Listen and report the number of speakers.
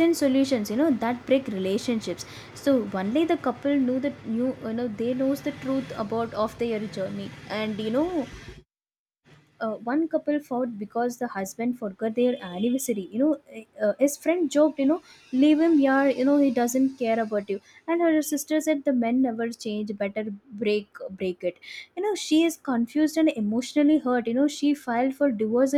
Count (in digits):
1